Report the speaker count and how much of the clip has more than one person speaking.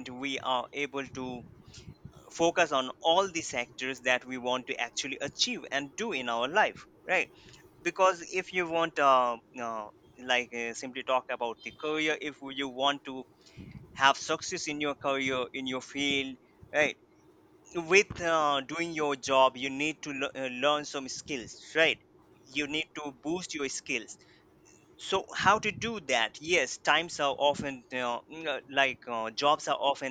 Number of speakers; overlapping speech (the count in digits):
1, no overlap